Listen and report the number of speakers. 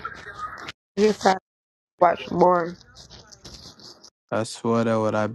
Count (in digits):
2